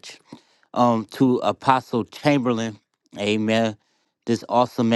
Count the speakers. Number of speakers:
one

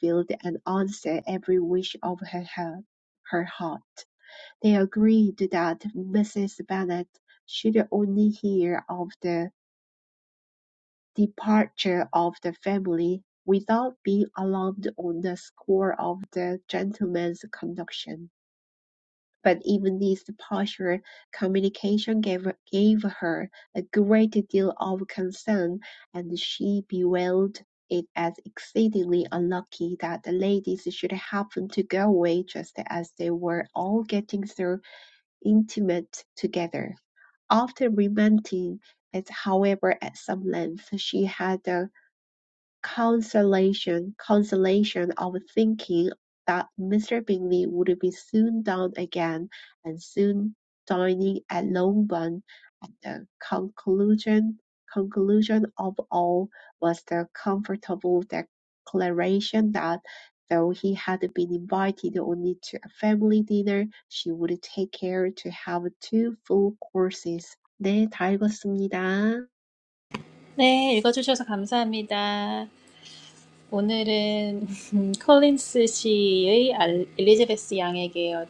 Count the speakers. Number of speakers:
two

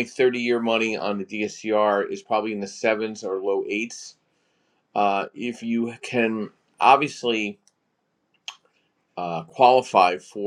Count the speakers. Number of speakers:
one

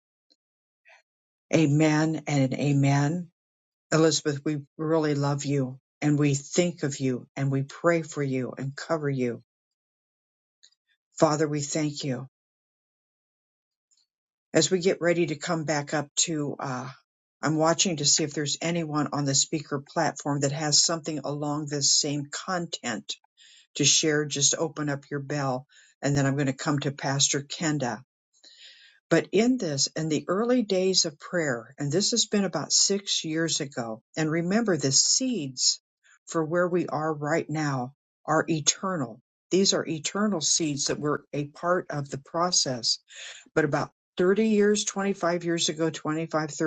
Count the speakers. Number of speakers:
one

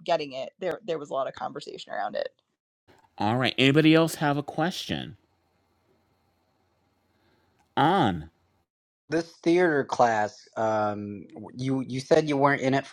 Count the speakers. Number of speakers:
three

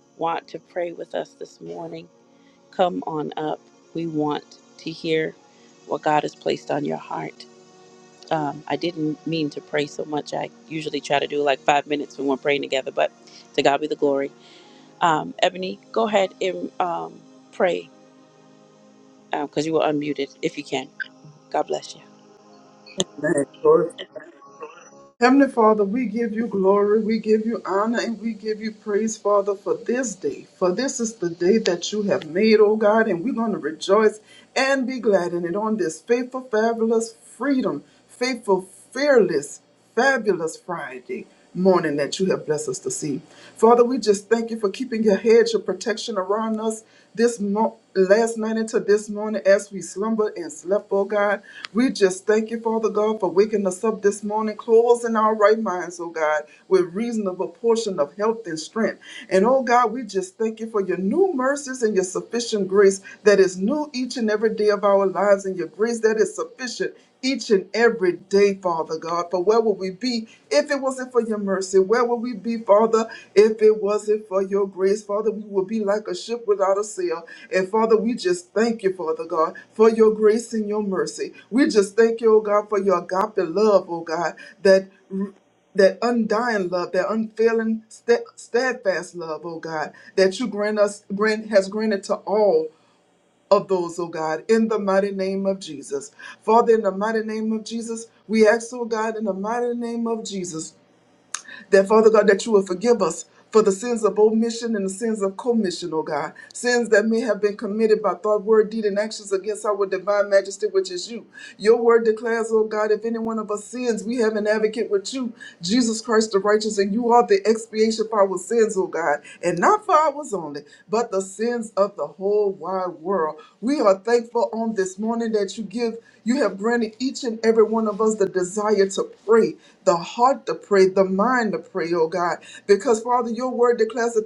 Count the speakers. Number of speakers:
two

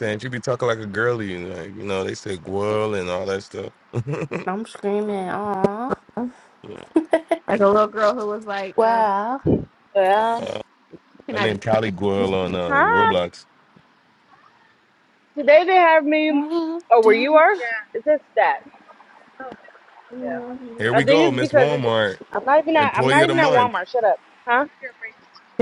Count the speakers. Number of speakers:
four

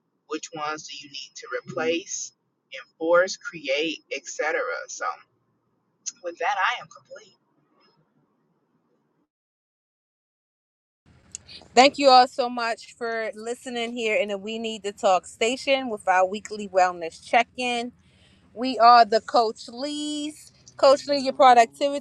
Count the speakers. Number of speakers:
two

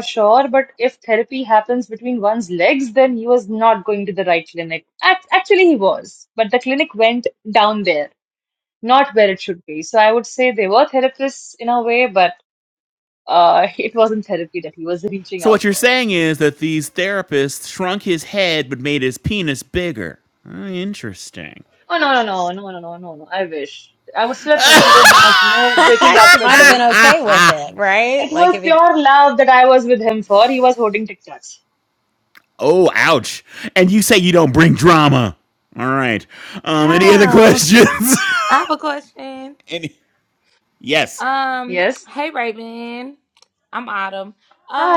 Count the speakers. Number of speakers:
four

